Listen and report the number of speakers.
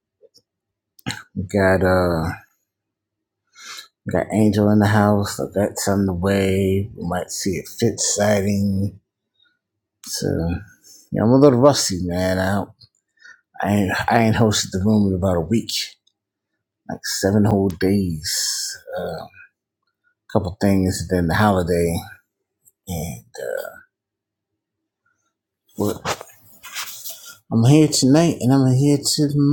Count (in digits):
1